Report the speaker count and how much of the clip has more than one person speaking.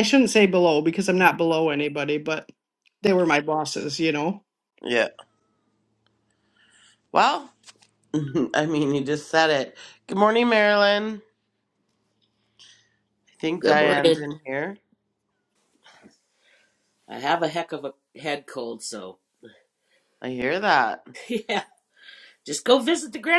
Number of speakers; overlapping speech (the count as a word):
three, about 3%